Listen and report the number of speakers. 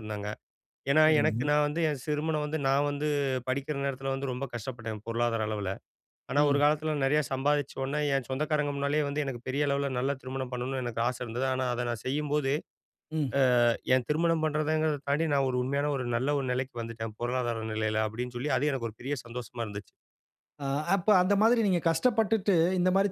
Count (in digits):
2